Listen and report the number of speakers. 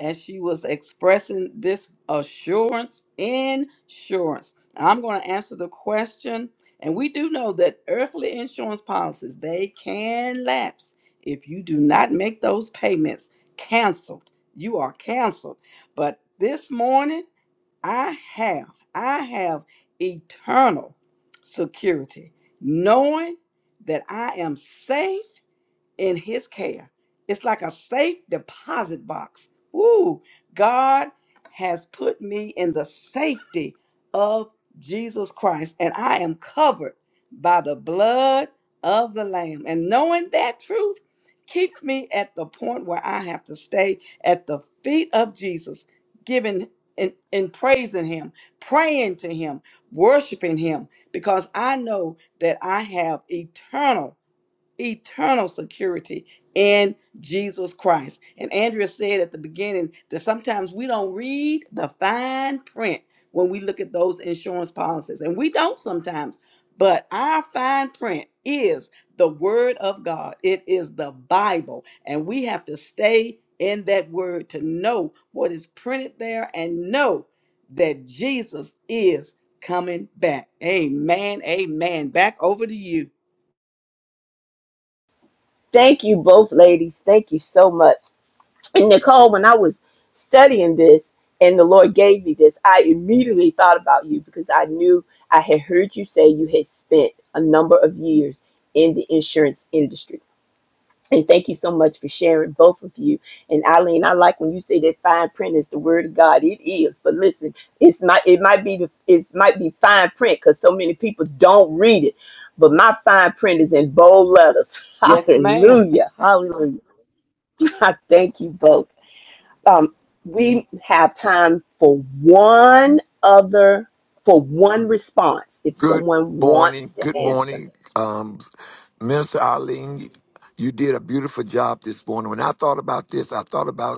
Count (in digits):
3